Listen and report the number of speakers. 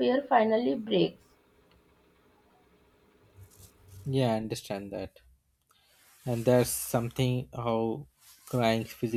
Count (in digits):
2